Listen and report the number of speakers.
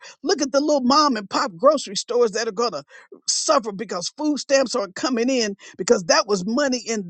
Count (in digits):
1